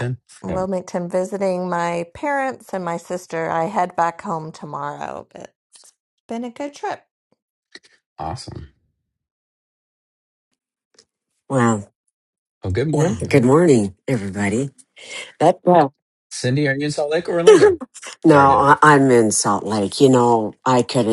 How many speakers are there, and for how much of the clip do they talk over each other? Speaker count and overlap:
3, about 6%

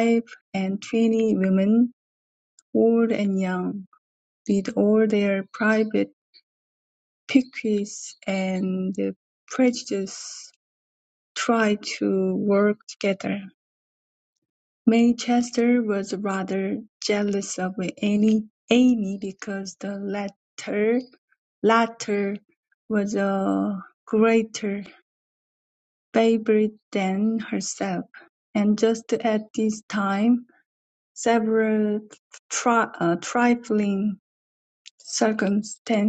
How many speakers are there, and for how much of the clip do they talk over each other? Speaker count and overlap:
1, no overlap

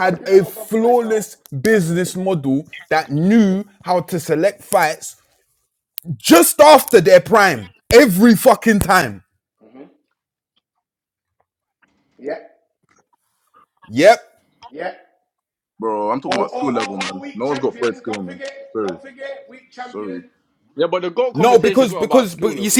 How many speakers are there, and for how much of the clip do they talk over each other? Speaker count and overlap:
4, about 25%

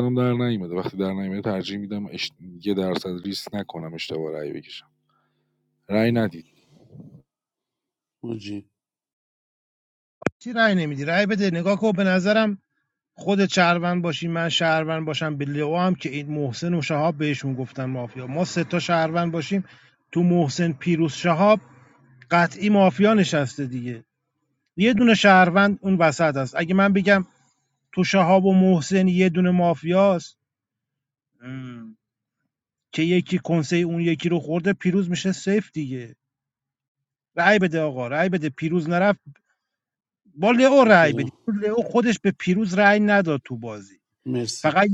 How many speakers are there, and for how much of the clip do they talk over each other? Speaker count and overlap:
3, about 2%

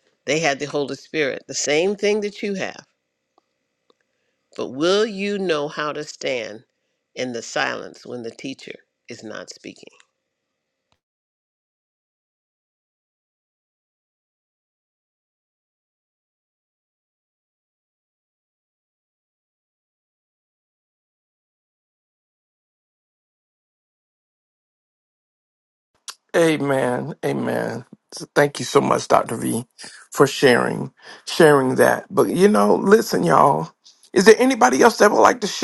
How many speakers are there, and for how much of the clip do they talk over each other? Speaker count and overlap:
2, no overlap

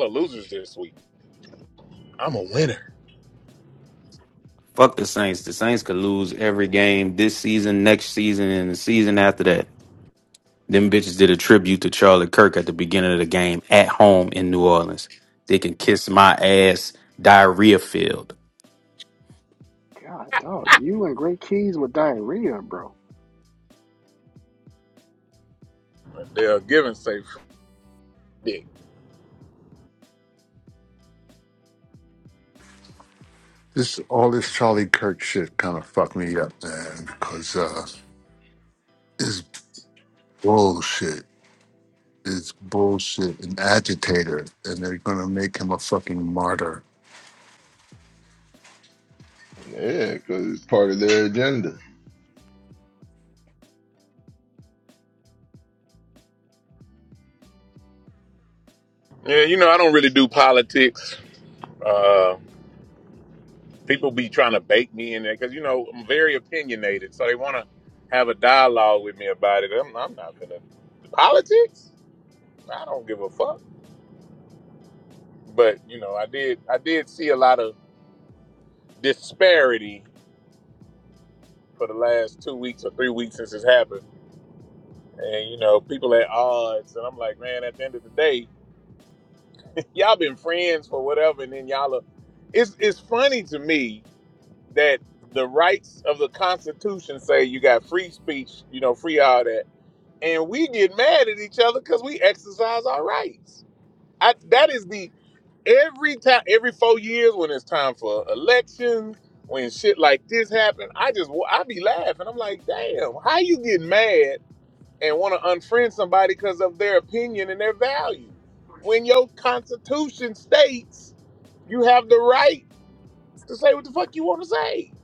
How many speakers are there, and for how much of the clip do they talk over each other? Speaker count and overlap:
5, no overlap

